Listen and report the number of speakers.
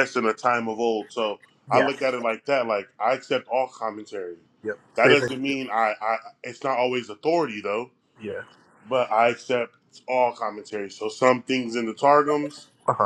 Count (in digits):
2